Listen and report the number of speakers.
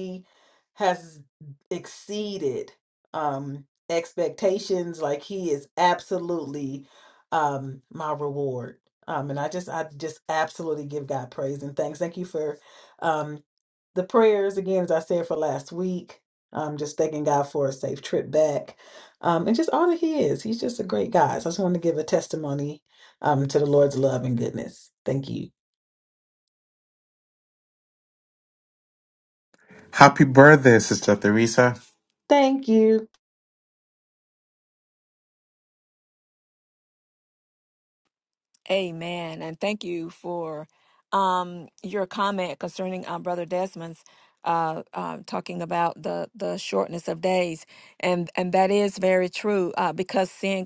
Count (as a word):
three